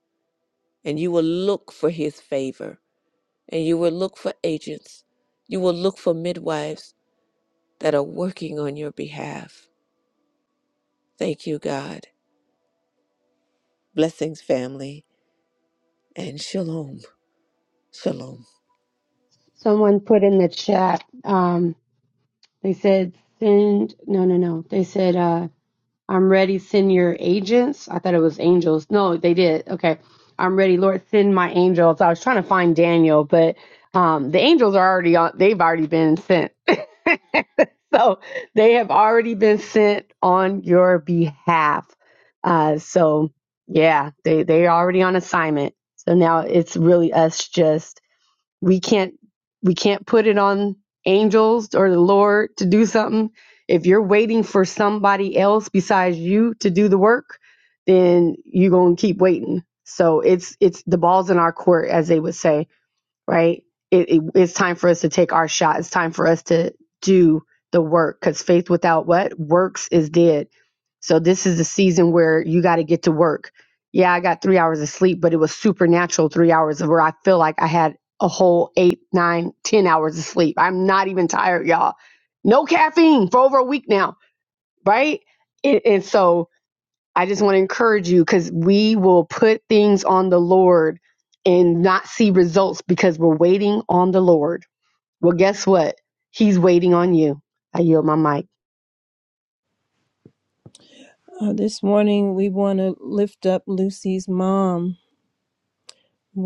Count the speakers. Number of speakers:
3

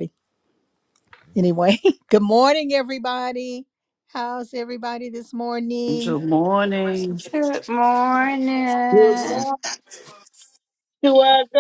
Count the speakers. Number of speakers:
4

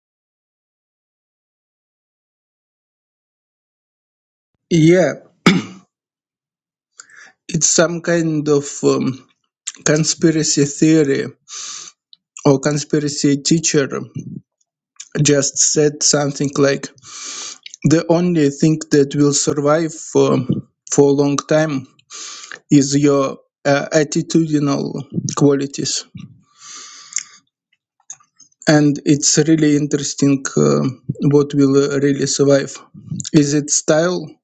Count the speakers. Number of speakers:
1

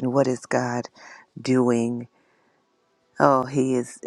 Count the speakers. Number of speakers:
1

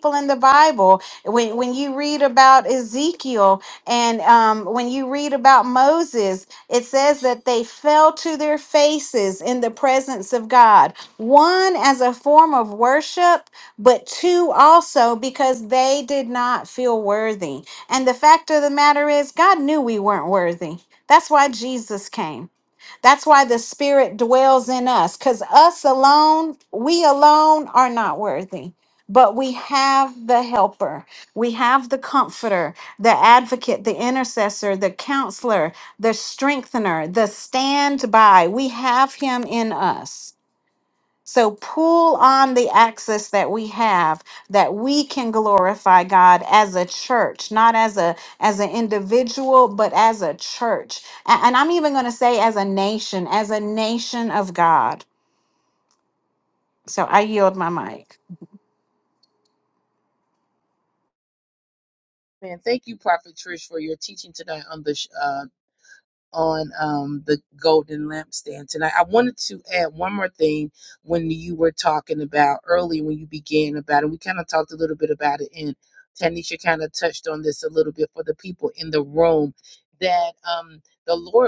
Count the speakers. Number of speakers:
2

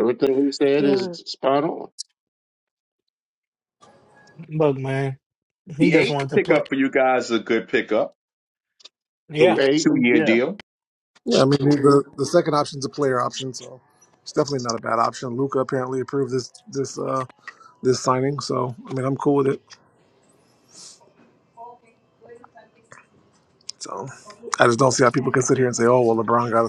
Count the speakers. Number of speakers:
4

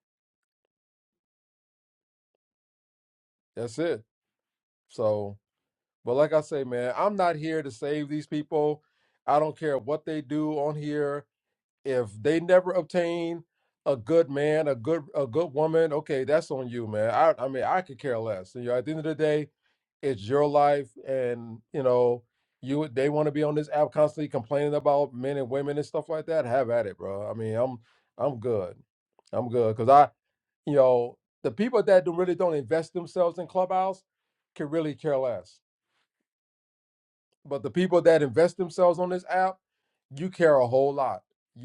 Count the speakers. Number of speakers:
1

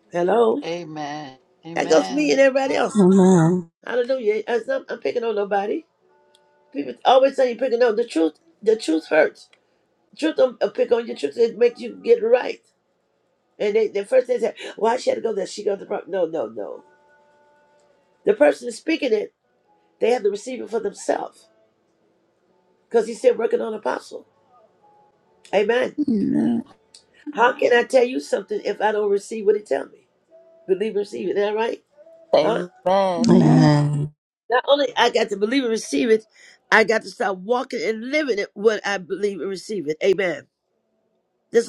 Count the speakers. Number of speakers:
4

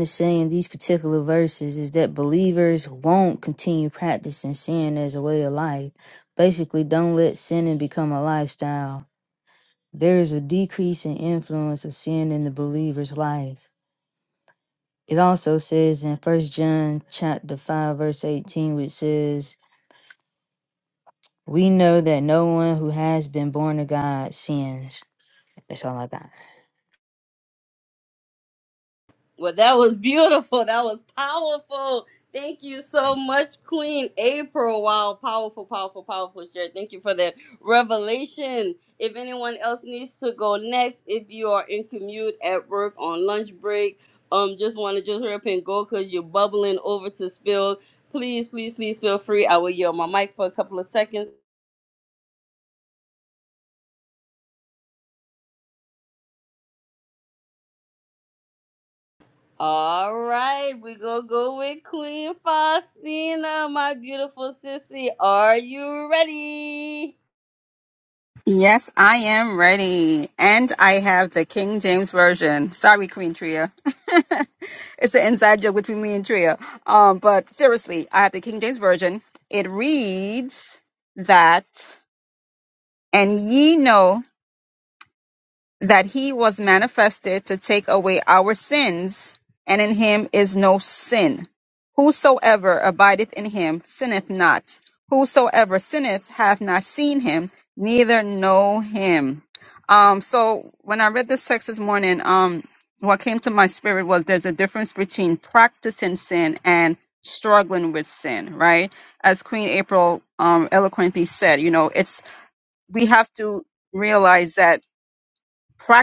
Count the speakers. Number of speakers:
3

